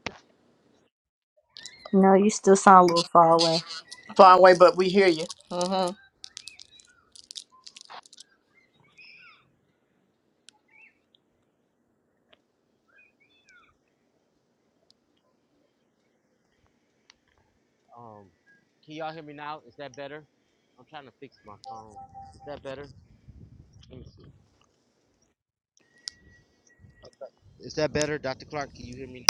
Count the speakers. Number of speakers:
3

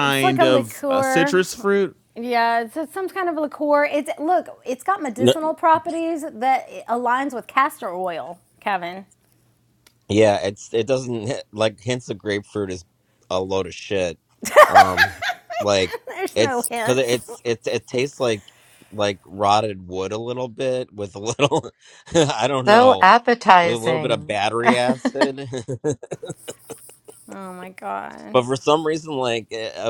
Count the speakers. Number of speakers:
4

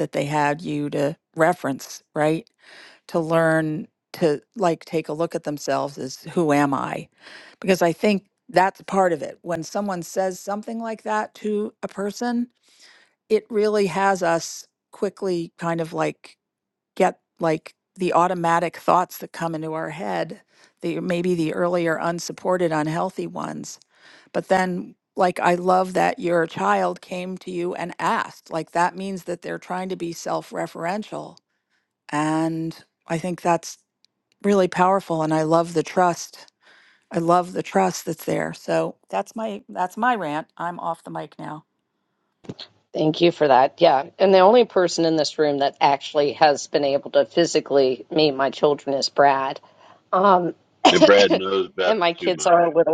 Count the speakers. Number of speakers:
3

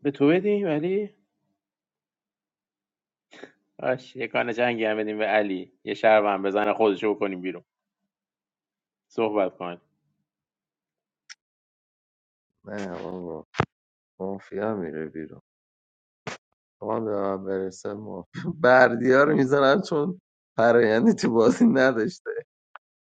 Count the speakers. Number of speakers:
2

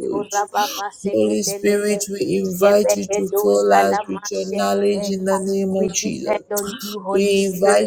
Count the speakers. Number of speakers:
2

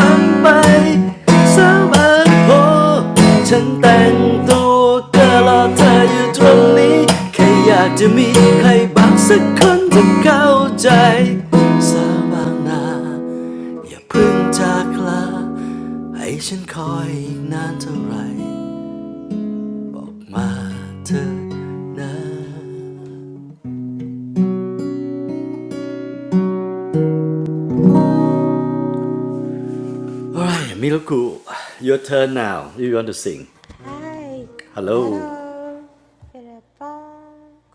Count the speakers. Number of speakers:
2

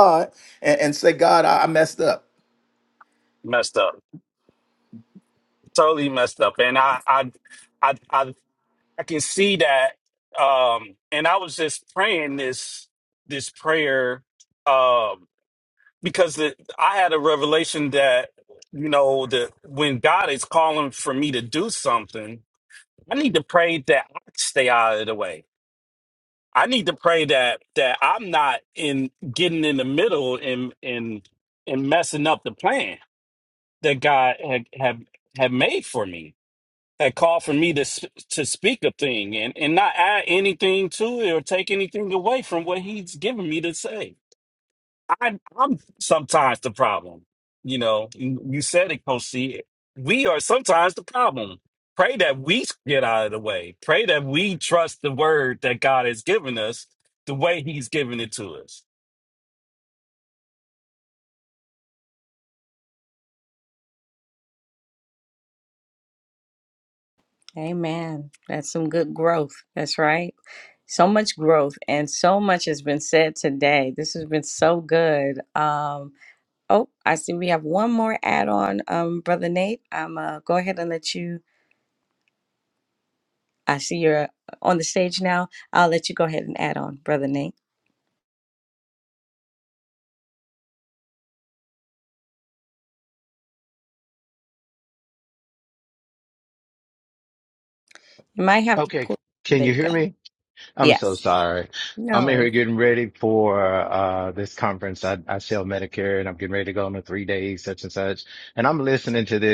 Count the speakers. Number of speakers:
4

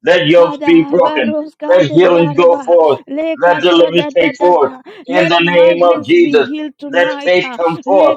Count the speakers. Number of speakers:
2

